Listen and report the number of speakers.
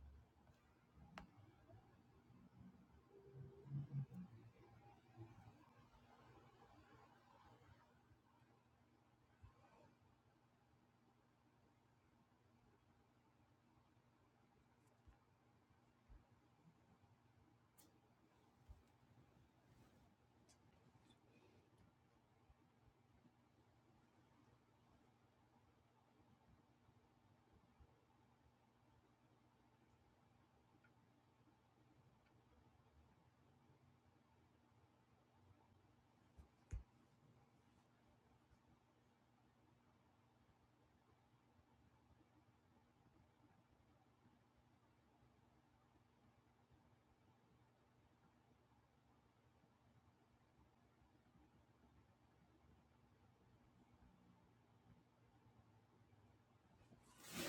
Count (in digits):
0